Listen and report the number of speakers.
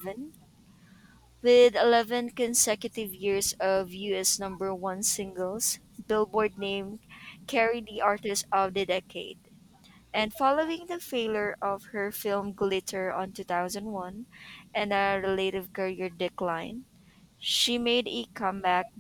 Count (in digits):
1